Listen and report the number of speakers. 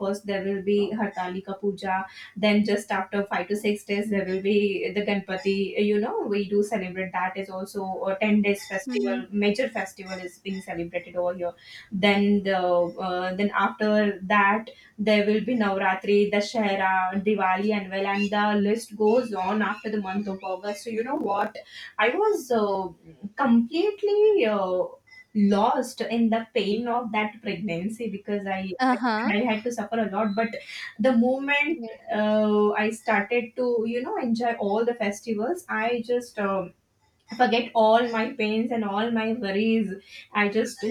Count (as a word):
two